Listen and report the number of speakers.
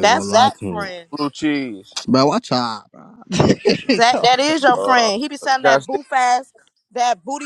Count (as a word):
three